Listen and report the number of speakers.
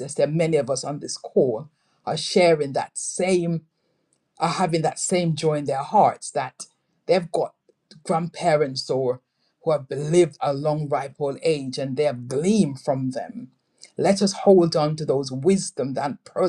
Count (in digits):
1